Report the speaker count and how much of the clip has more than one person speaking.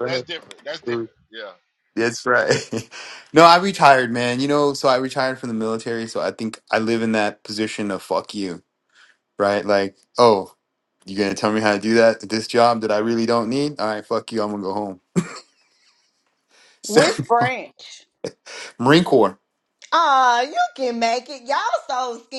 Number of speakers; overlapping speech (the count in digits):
3, about 1%